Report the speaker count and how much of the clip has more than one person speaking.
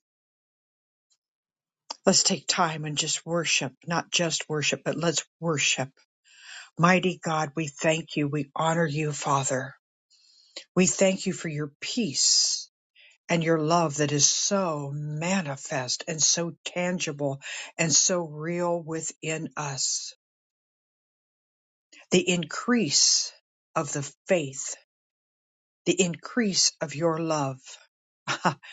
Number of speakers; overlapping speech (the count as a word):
one, no overlap